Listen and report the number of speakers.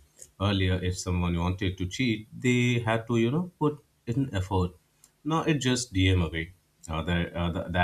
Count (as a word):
one